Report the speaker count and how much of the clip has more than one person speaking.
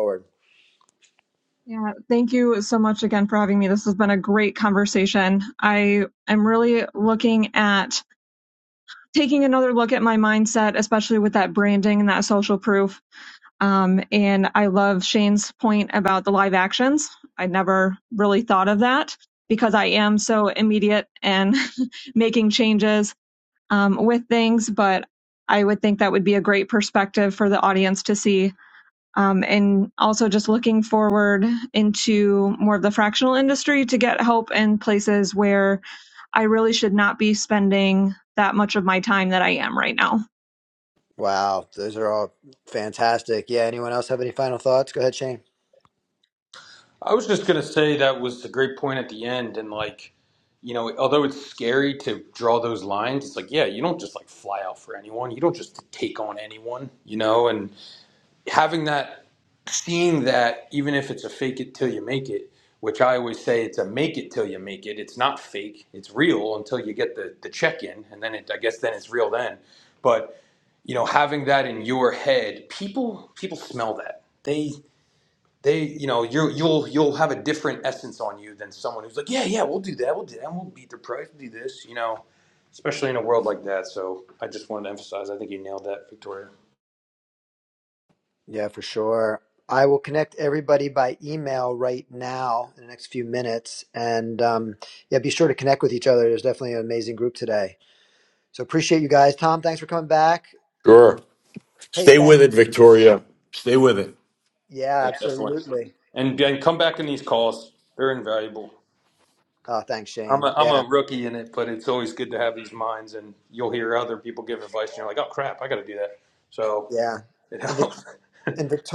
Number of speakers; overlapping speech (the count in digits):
4, about 2%